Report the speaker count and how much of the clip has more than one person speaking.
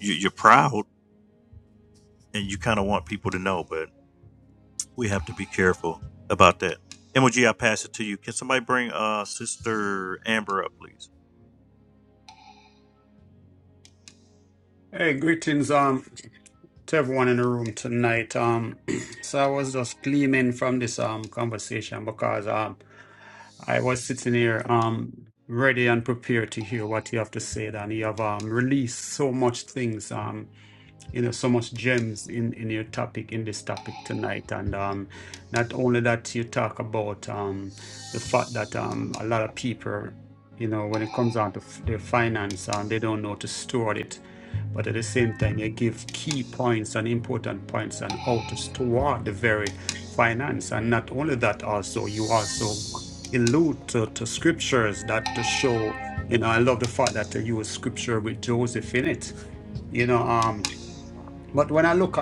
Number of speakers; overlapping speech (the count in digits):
2, no overlap